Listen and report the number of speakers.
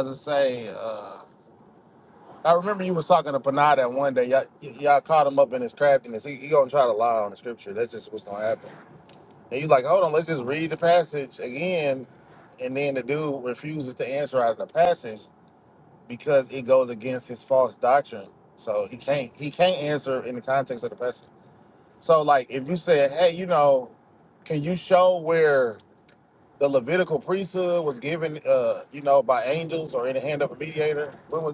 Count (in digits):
1